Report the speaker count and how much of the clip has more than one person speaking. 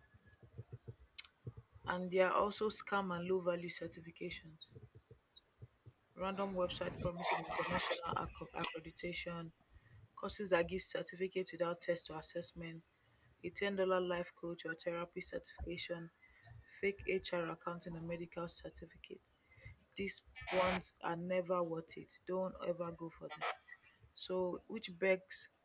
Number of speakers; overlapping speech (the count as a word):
one, no overlap